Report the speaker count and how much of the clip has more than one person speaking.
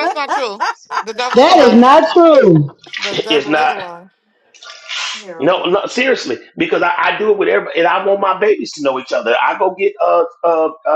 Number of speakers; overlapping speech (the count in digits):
3, about 11%